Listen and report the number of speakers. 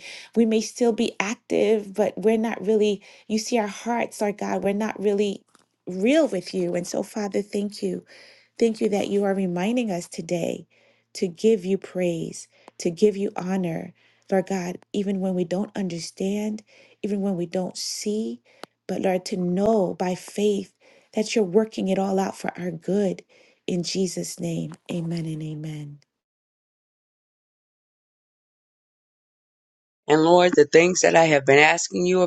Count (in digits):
2